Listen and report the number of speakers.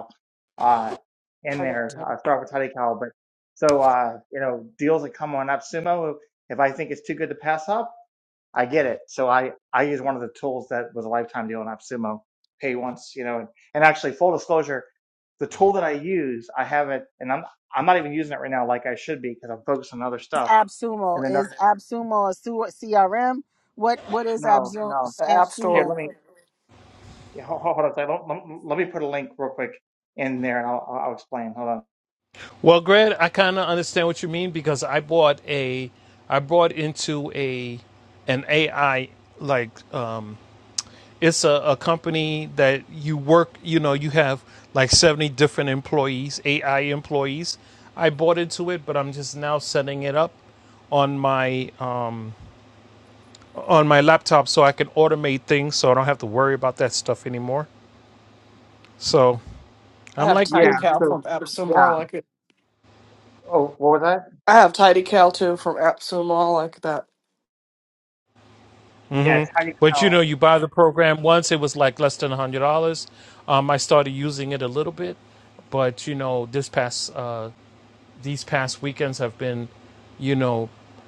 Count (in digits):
4